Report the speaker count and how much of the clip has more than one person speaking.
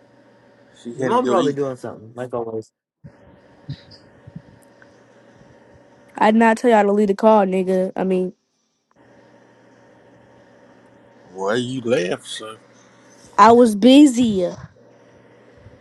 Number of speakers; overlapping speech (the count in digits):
3, about 4%